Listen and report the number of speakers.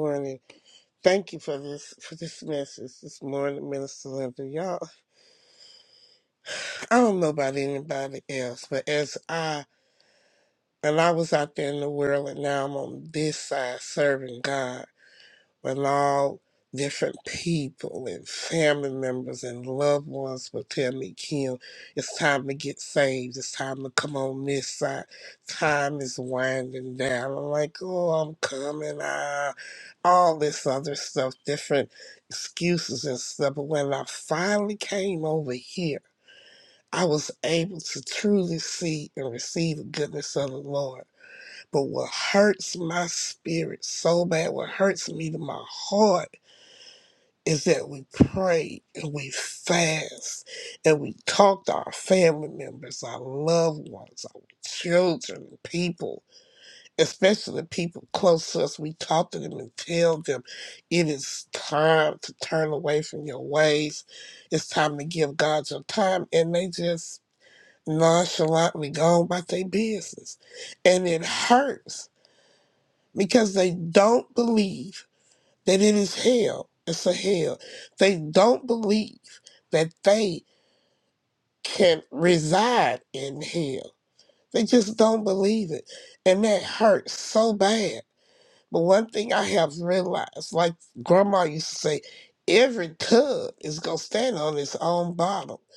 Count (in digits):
1